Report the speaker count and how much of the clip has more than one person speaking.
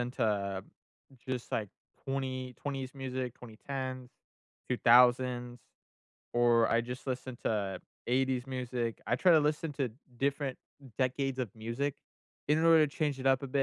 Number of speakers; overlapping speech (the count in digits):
1, no overlap